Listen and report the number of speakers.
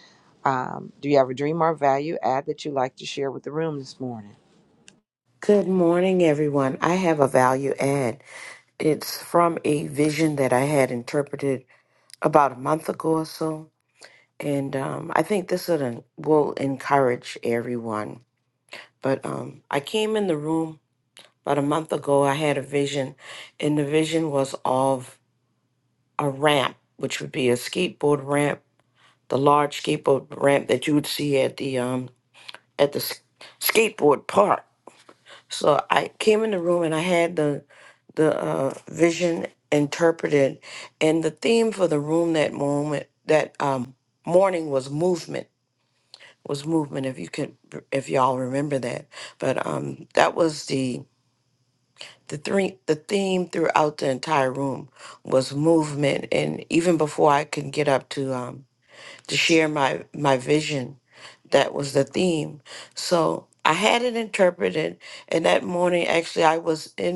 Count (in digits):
2